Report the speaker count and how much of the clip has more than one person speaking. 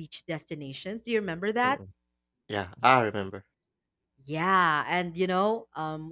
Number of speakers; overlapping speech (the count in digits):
2, about 2%